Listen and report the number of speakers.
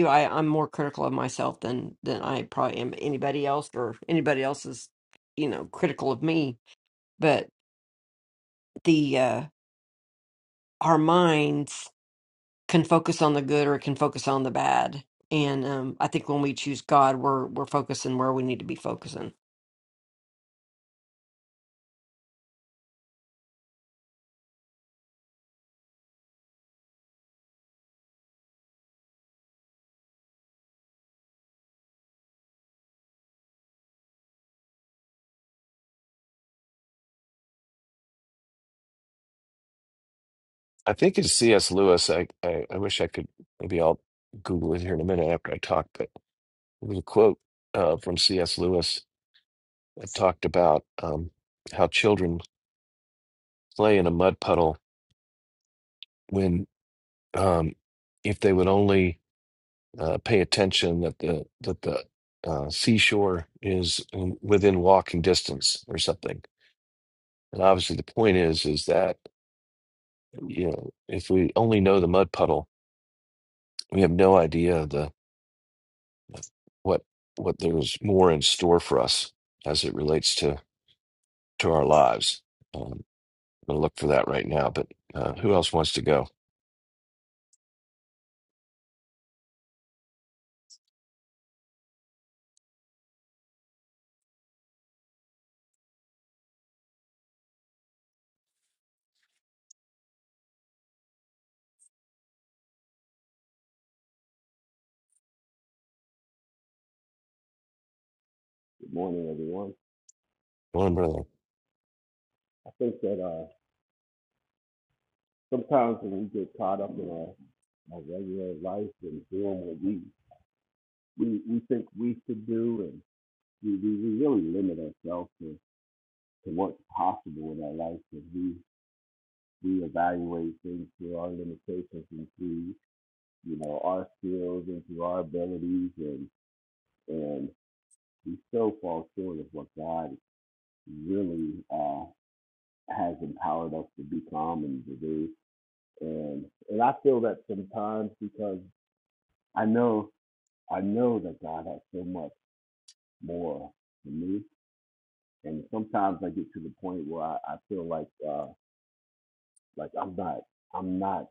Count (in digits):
3